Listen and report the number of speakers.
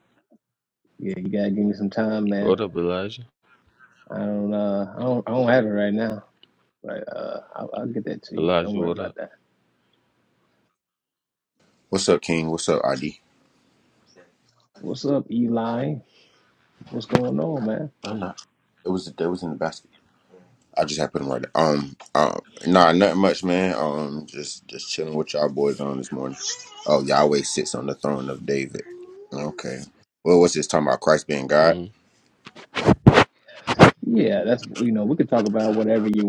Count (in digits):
3